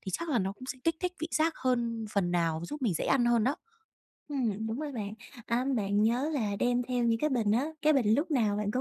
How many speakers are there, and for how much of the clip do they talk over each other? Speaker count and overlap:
two, no overlap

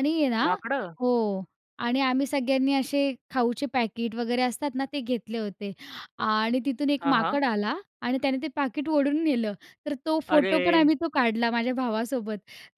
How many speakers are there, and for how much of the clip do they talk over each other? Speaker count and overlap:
two, about 8%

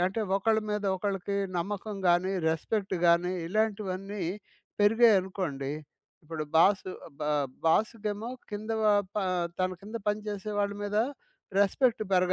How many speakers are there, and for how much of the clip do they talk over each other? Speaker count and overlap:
one, no overlap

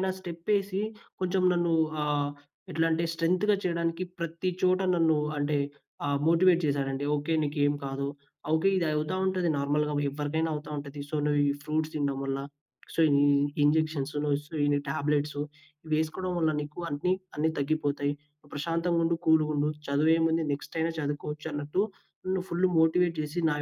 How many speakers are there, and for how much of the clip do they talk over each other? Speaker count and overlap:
one, no overlap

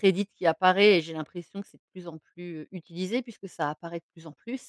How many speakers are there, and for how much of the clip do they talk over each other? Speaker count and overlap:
one, no overlap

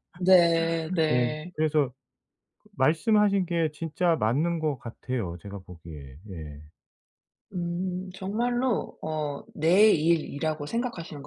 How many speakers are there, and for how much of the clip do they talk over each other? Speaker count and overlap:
two, about 4%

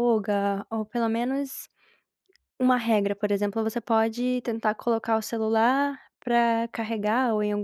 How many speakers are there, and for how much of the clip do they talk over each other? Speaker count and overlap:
one, no overlap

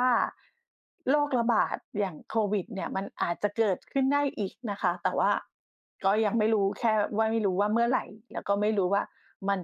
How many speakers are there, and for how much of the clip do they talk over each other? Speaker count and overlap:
one, no overlap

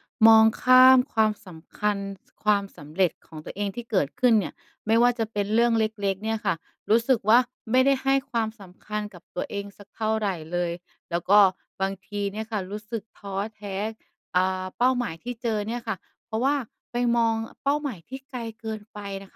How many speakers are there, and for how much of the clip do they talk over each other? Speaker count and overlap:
one, no overlap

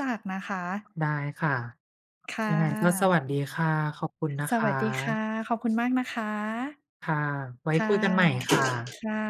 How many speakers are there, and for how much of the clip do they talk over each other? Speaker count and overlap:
two, about 10%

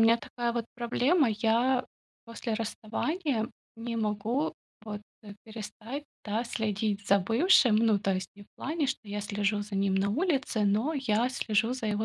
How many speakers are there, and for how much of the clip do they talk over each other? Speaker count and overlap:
one, no overlap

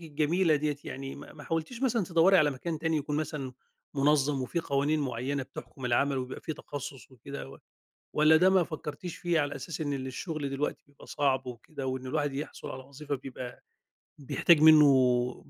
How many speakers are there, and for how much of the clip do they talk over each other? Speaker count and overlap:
one, no overlap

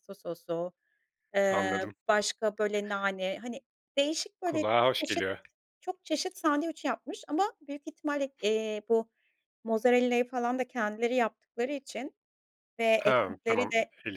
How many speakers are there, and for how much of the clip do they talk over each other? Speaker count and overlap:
two, about 13%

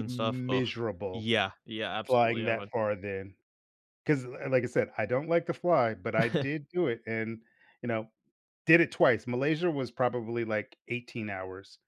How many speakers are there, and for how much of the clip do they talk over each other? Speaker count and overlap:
two, about 11%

